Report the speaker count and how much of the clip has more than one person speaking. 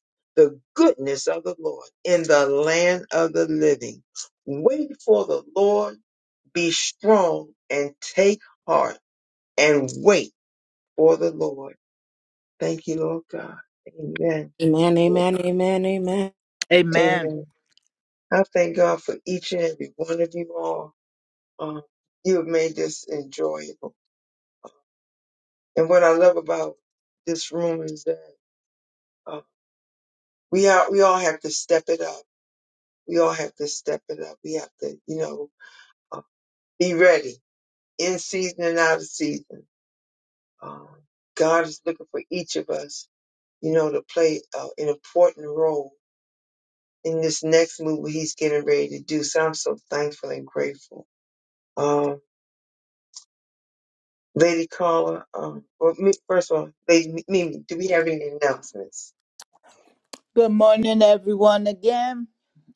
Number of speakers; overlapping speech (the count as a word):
three, about 1%